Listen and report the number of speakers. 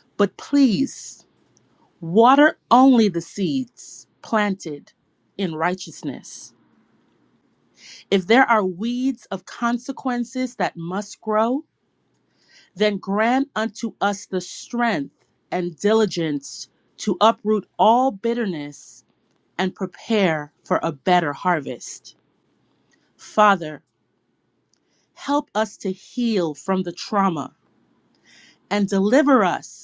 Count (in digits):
1